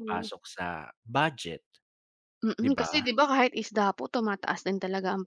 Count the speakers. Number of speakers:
2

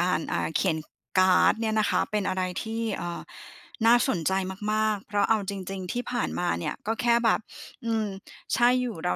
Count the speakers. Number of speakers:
1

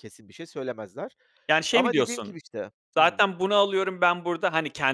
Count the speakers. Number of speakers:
2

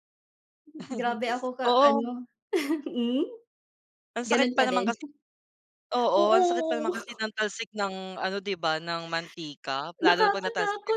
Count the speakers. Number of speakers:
2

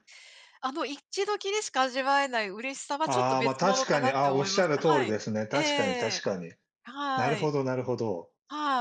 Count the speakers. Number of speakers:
2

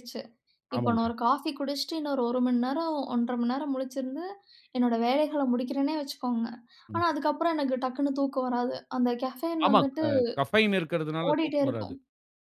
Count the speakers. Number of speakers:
2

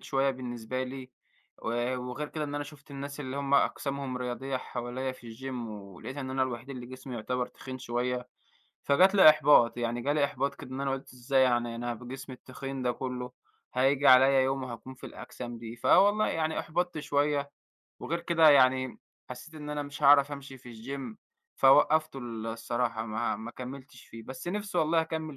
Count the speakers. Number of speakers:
1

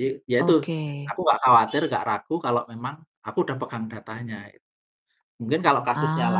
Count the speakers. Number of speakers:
2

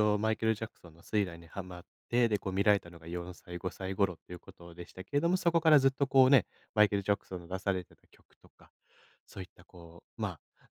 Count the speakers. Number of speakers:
1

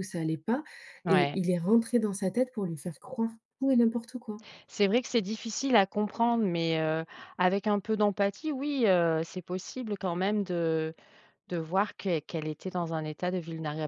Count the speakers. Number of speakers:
2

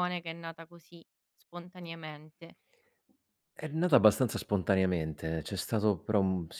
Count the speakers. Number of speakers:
2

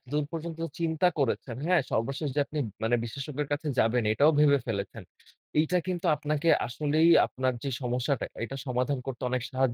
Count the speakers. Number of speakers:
1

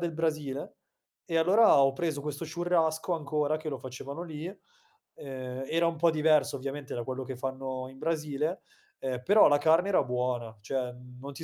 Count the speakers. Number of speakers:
1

